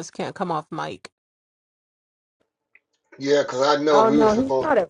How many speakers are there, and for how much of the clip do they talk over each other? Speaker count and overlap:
2, about 16%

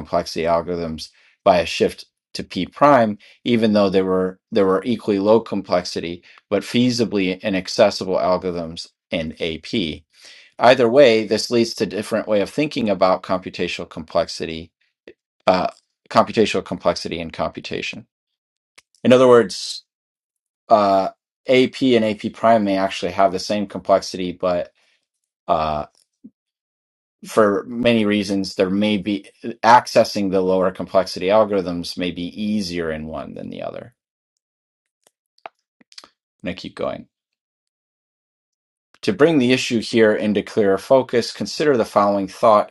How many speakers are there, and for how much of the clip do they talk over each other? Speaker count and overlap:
1, no overlap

